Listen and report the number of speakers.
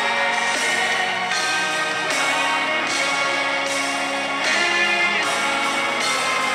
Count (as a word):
zero